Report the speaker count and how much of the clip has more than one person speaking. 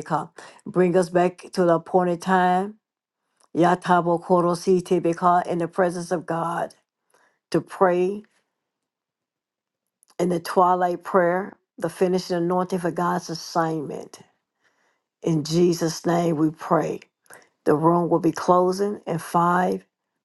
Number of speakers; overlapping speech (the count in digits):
1, no overlap